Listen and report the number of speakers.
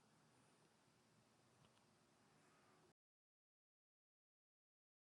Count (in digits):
0